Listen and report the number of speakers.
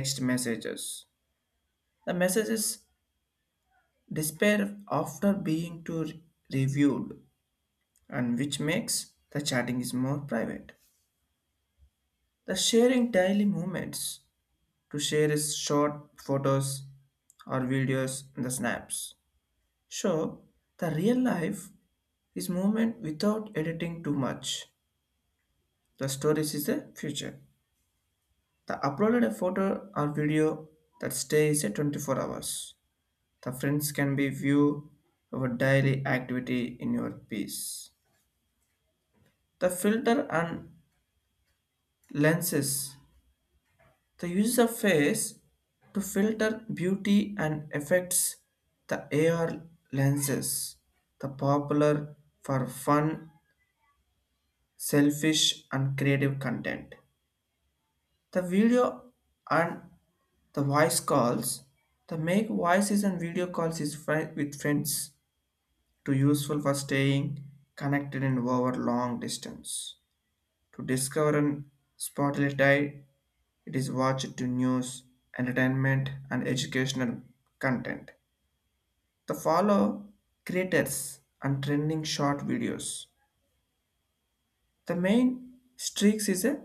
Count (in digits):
1